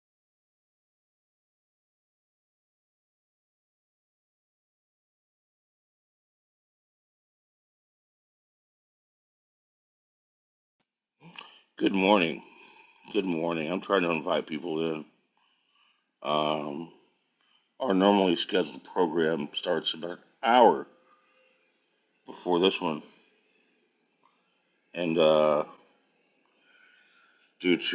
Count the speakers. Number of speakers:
one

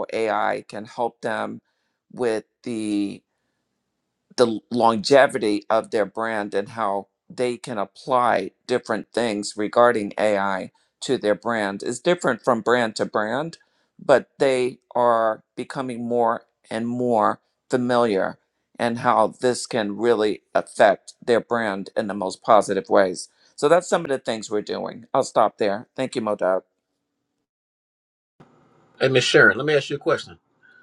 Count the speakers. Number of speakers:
two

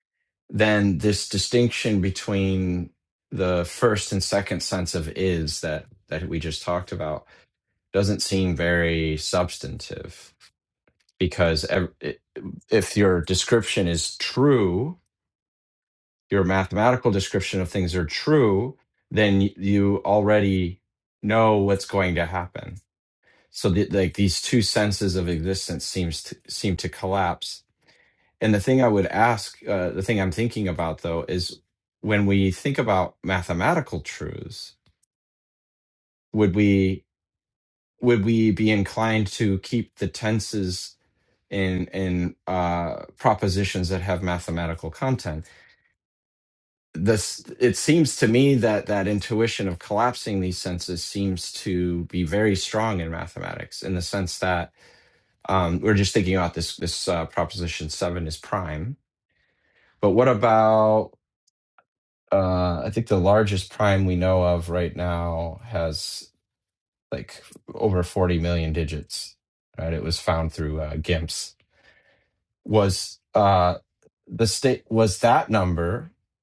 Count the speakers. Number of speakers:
one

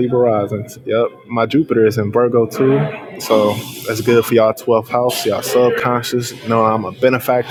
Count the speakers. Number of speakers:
one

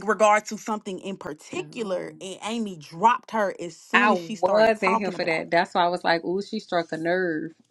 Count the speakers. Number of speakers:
two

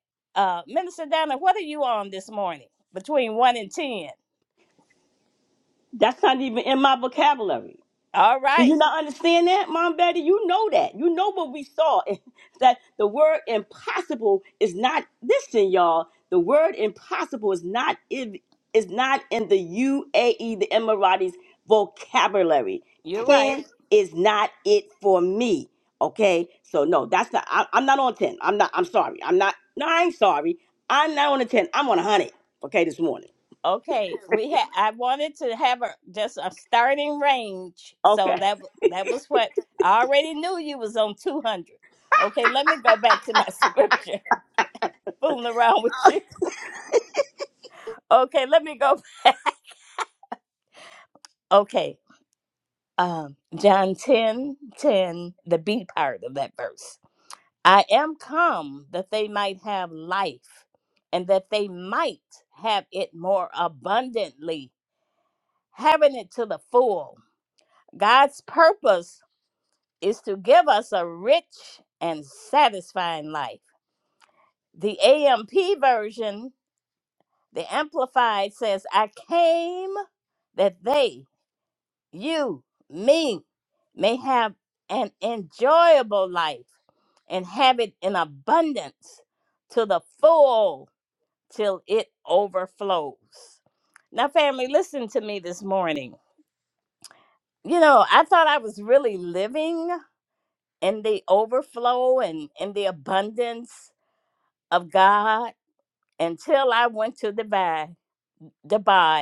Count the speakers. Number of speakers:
two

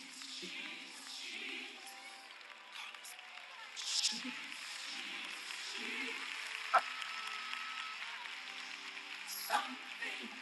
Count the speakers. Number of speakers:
zero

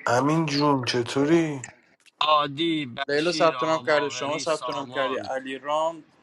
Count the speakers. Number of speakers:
three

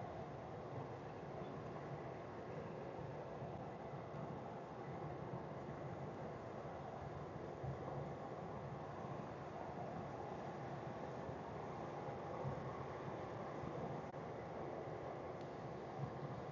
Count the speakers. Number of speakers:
zero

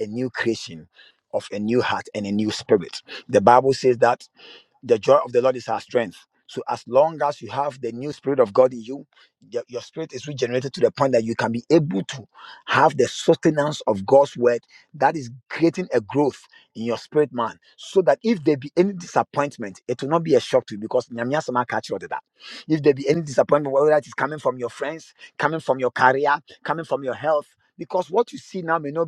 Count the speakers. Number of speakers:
one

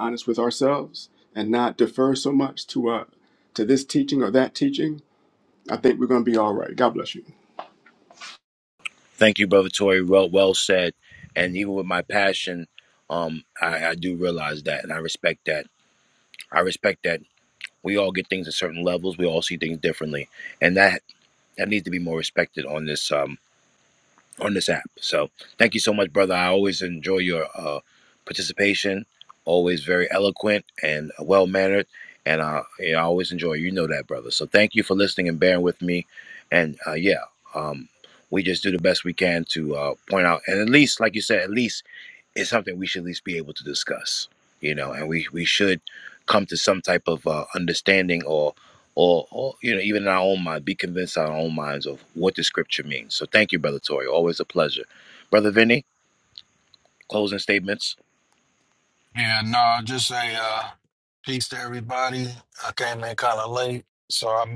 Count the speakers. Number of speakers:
three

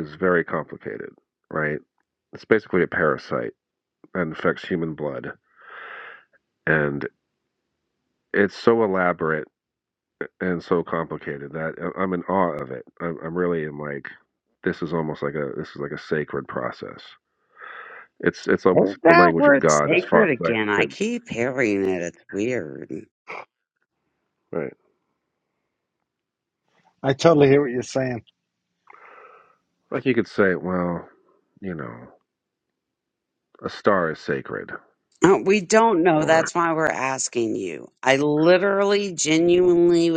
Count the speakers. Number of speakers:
three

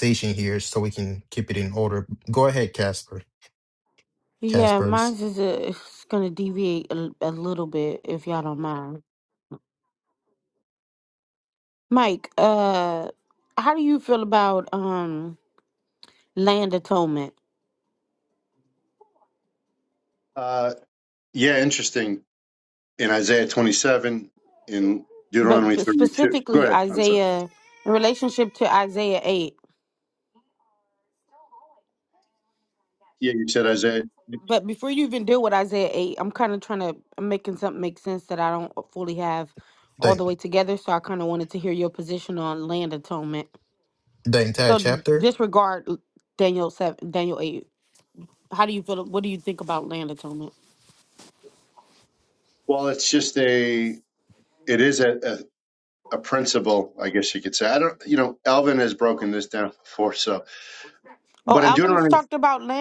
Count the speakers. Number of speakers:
three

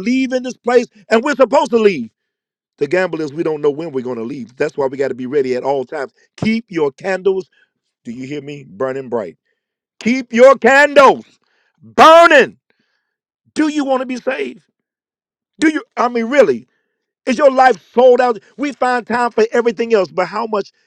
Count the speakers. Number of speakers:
one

